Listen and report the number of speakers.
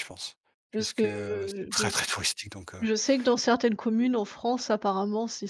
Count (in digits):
2